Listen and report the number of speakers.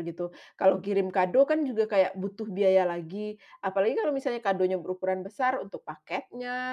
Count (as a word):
one